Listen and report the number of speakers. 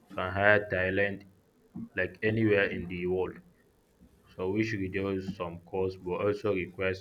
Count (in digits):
1